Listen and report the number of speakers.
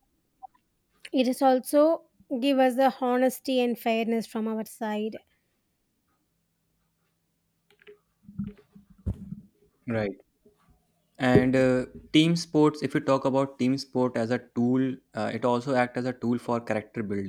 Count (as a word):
two